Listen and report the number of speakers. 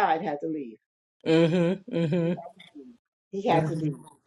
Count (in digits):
2